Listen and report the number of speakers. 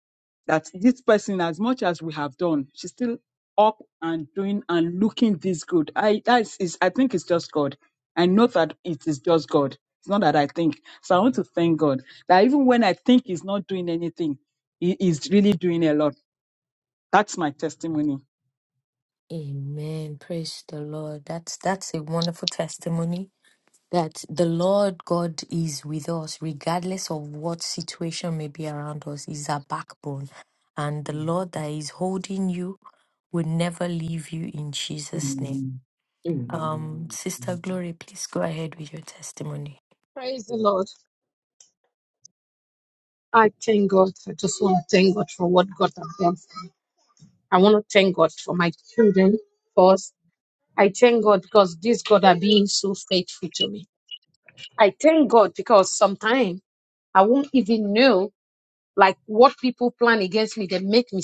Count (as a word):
three